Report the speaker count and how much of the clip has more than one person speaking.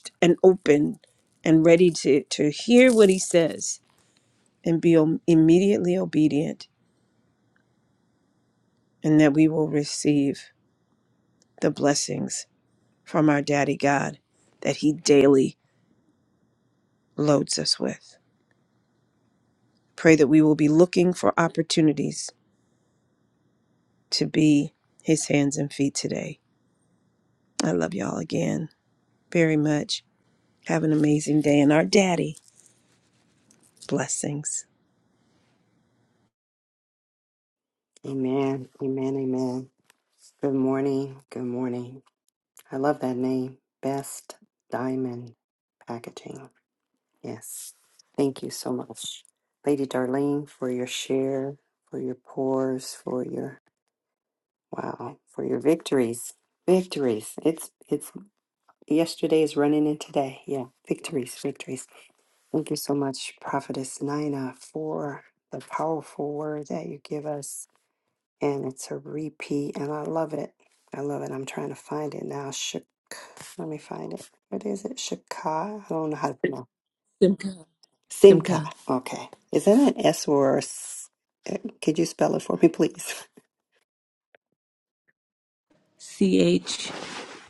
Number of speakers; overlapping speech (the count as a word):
three, under 1%